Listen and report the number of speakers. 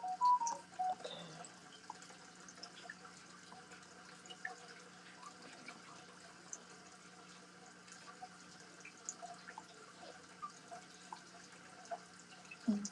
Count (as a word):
zero